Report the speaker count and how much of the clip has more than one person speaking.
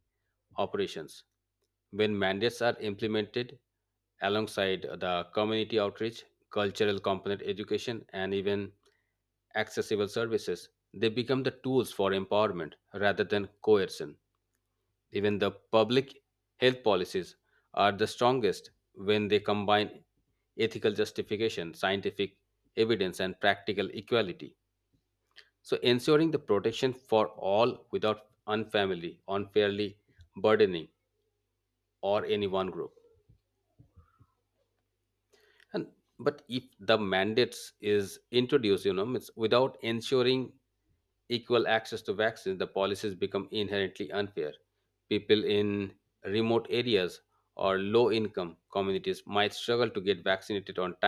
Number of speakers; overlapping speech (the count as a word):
one, no overlap